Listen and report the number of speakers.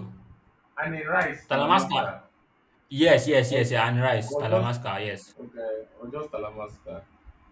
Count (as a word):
two